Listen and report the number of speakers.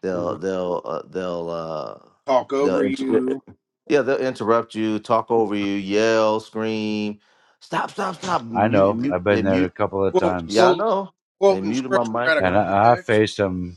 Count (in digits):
3